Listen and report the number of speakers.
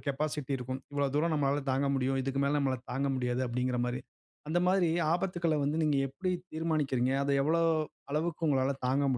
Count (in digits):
1